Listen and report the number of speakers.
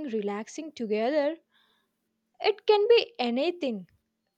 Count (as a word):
one